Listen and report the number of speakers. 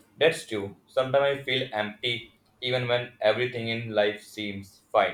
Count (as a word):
one